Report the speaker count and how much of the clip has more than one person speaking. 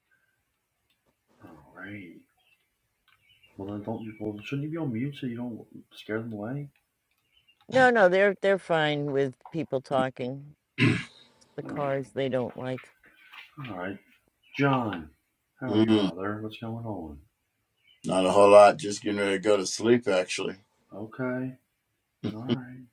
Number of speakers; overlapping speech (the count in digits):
3, about 3%